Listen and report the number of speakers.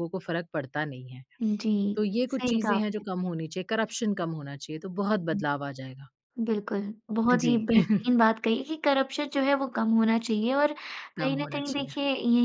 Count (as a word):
two